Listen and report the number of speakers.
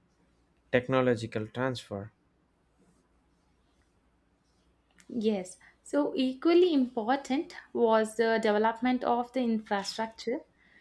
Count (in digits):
2